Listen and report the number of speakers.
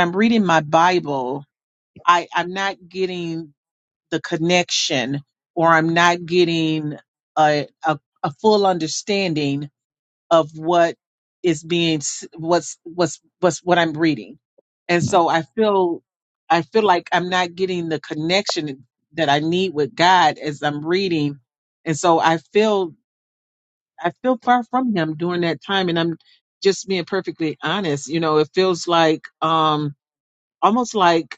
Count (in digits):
1